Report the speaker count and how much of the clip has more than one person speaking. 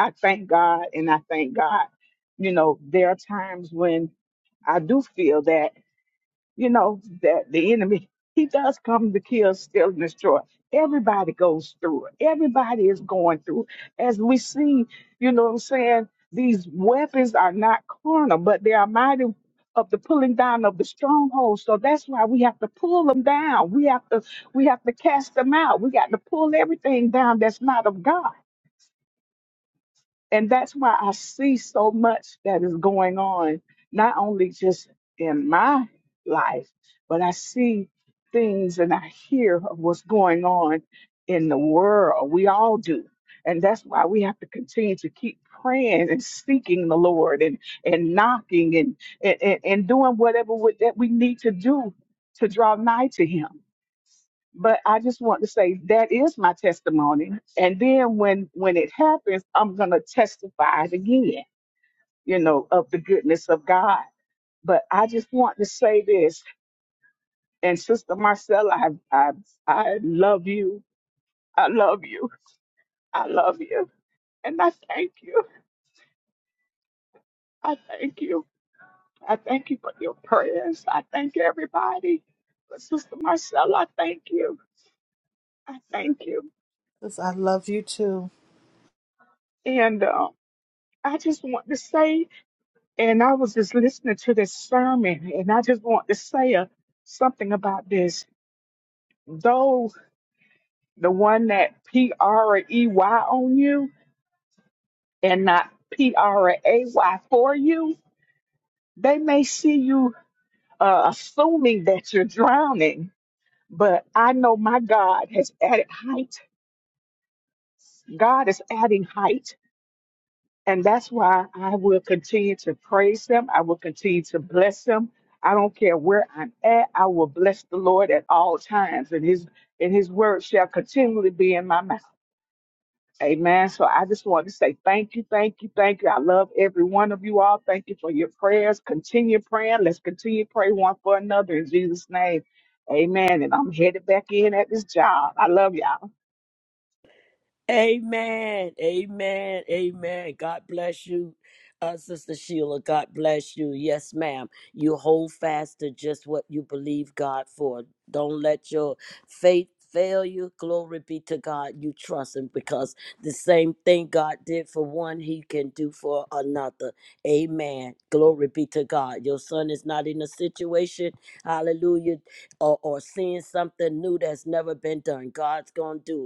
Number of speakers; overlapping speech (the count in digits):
3, no overlap